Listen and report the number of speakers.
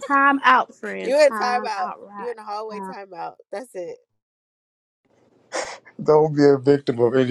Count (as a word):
three